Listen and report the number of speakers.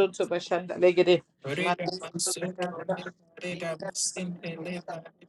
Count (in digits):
2